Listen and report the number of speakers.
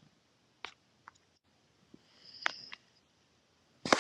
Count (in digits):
0